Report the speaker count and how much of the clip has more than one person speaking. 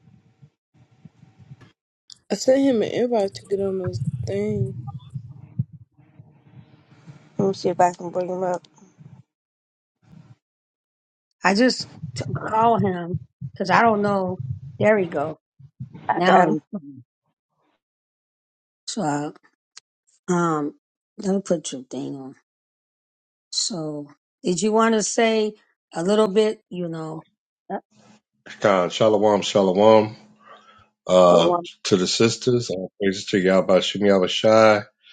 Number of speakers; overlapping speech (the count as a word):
four, about 2%